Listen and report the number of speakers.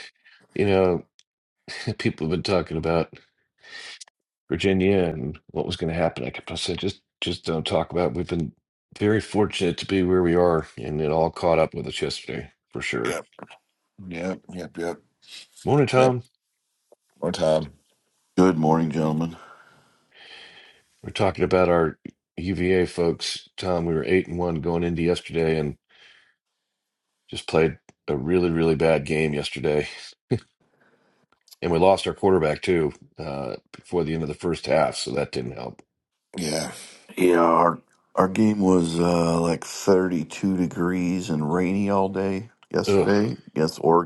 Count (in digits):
3